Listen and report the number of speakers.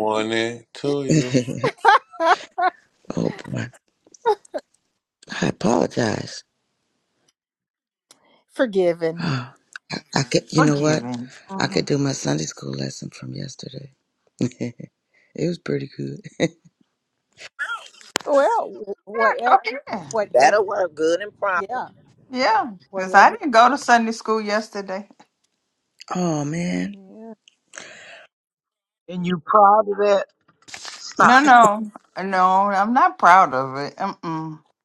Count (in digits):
6